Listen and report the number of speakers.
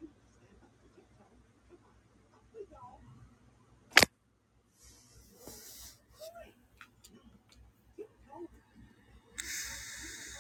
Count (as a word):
zero